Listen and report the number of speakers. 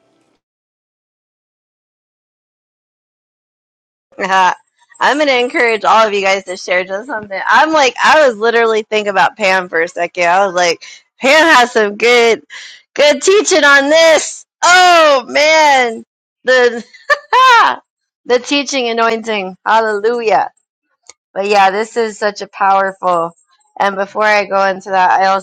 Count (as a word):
one